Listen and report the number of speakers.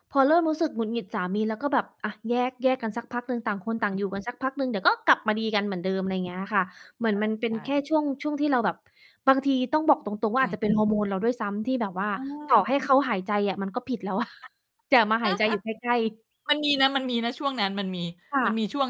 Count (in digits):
2